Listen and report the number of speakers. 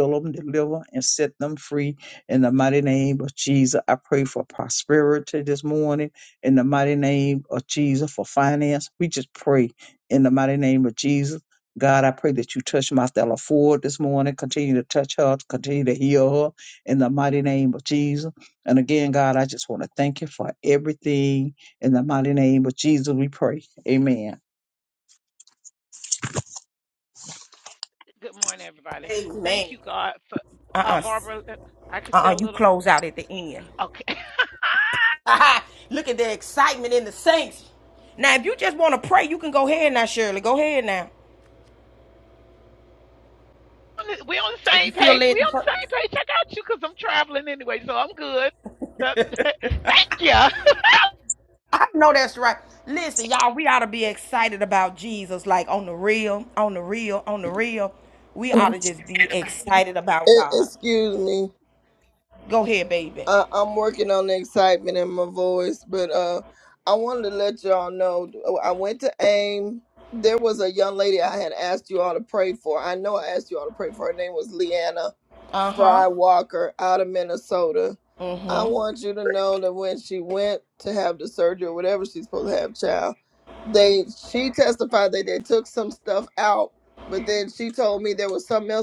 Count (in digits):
4